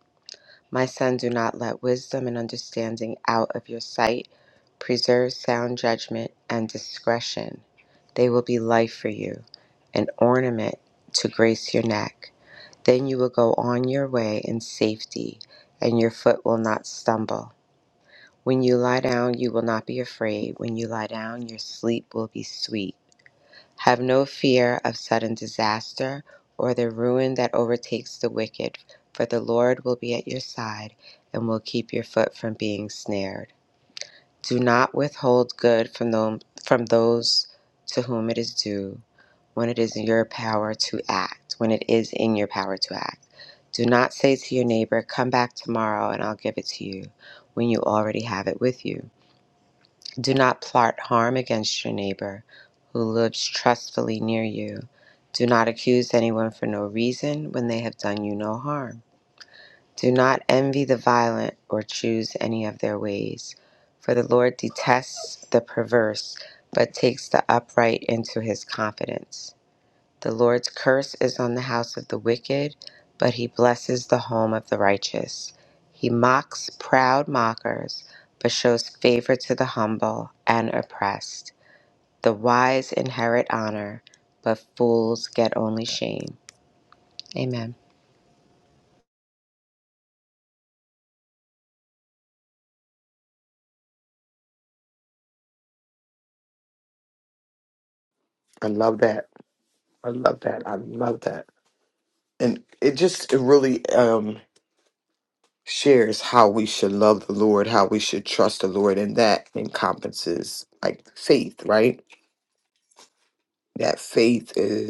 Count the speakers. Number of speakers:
2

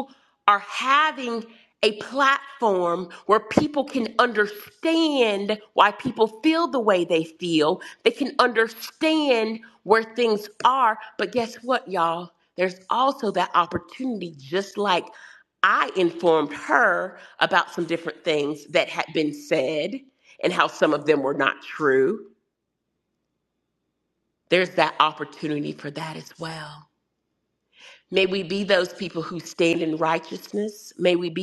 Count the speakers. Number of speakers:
1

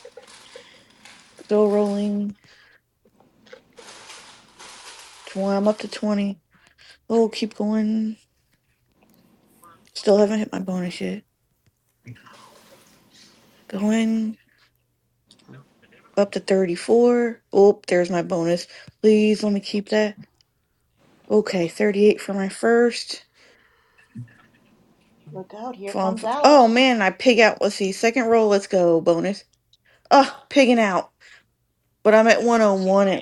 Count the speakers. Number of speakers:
2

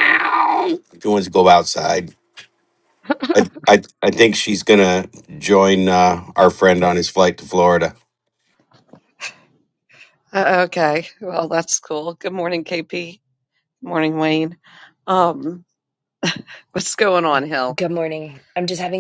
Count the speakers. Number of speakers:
3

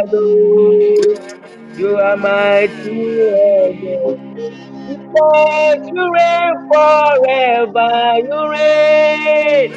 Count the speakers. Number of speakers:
1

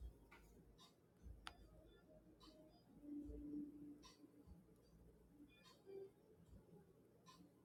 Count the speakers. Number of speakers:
0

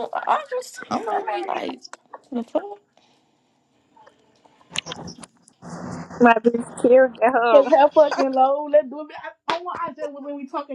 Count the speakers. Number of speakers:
3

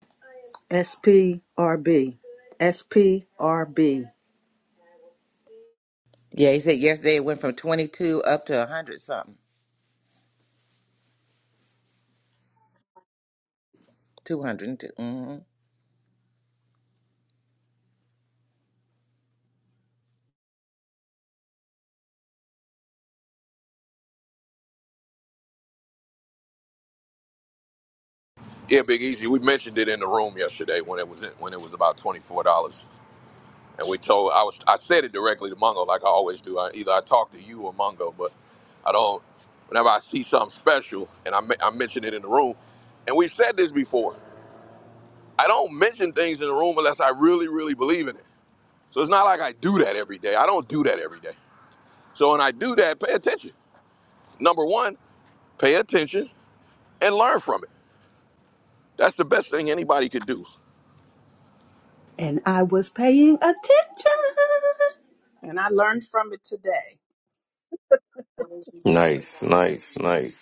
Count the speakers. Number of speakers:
5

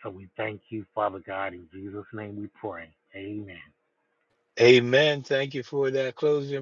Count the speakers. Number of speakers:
2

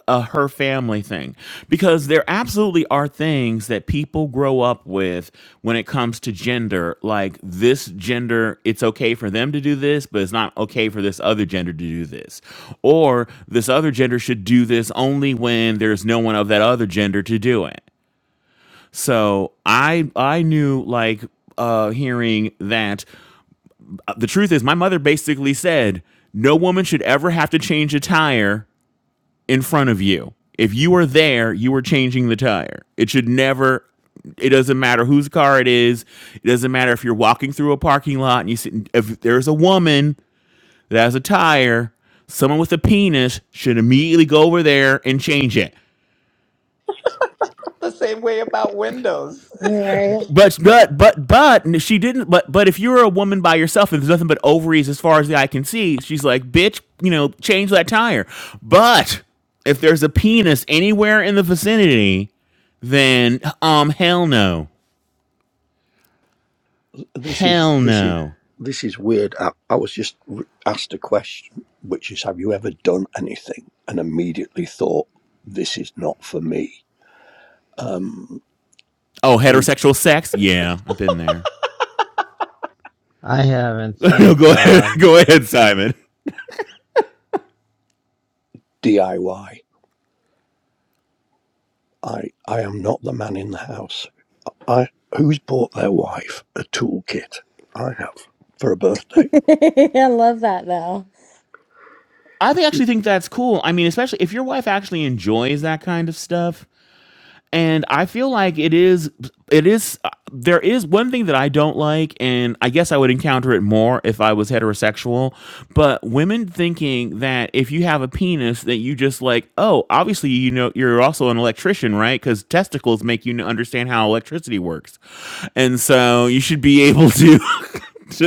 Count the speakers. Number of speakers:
5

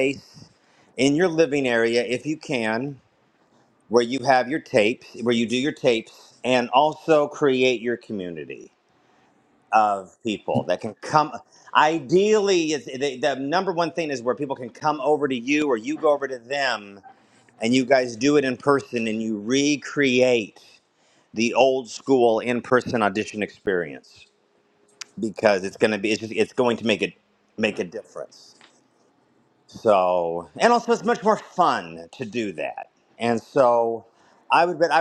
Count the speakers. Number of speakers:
1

